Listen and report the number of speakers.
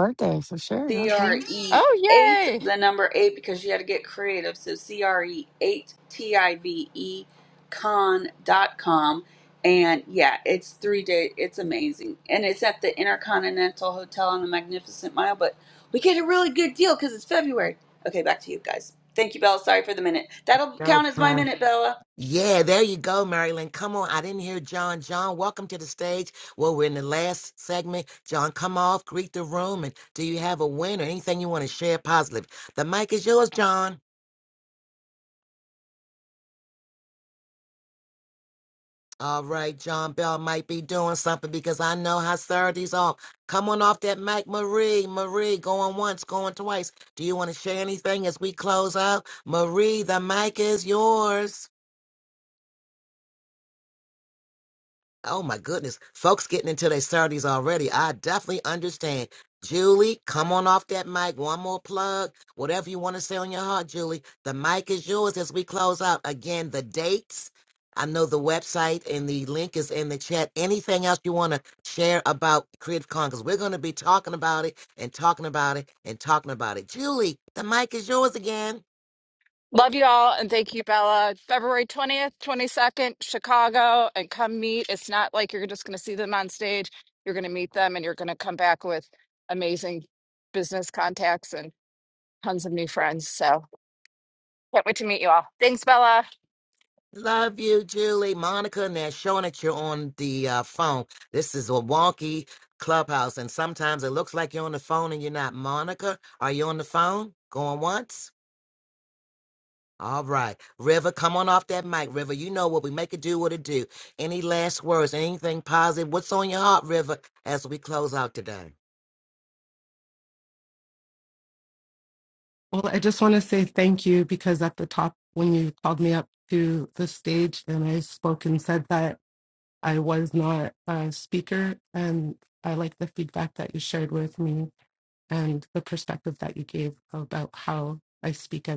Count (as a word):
five